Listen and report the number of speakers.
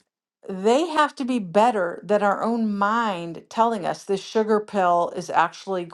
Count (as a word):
one